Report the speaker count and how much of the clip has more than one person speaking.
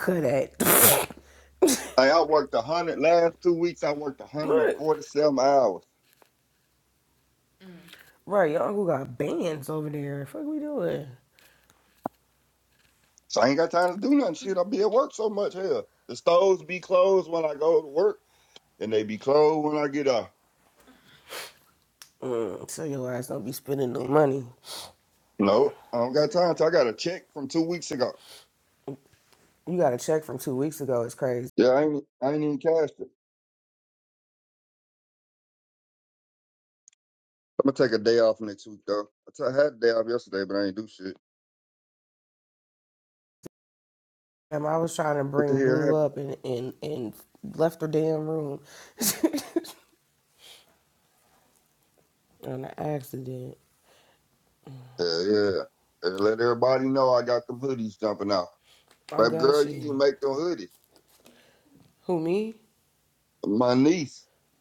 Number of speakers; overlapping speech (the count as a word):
two, about 3%